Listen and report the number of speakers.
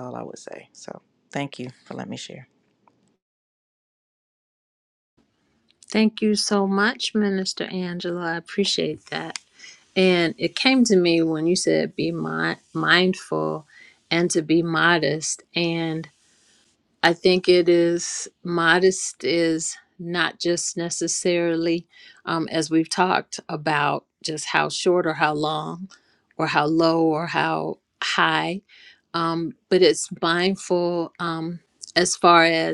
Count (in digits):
2